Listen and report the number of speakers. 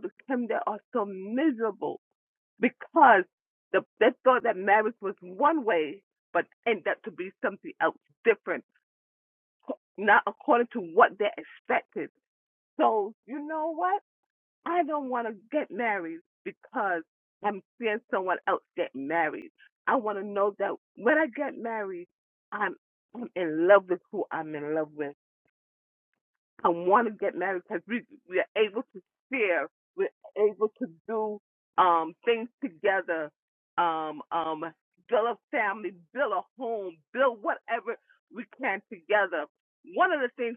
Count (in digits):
1